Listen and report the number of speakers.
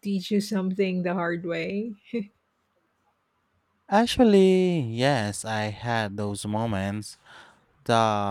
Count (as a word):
two